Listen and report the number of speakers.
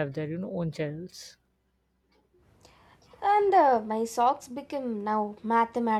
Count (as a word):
two